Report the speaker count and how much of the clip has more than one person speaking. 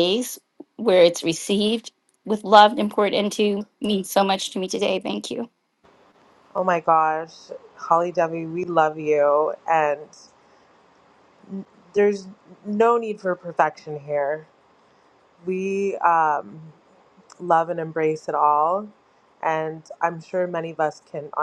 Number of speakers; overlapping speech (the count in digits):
2, no overlap